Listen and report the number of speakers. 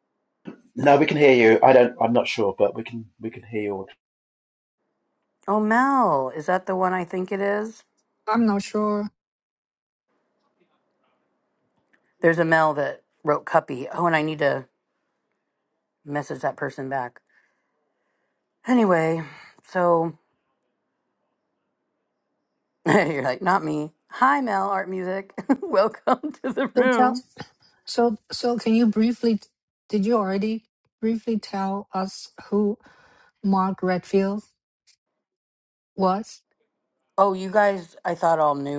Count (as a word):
three